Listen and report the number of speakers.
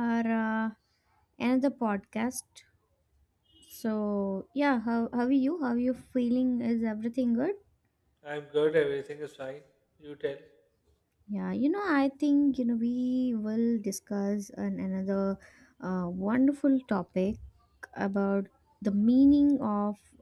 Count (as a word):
two